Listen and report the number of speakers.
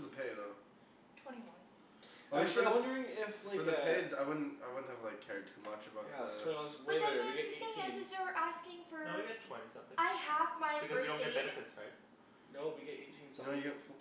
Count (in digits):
4